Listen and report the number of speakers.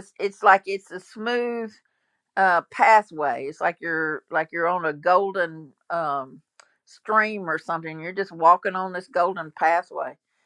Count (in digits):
1